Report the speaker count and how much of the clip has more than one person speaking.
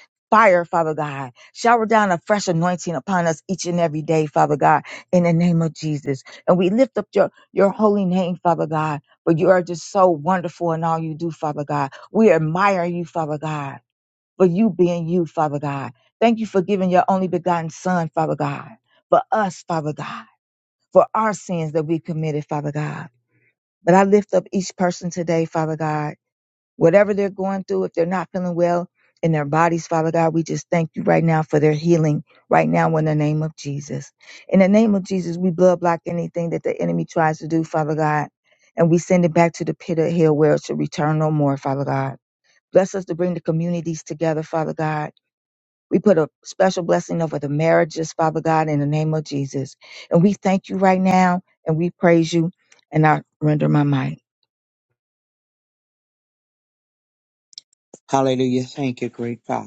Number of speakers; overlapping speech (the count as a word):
two, no overlap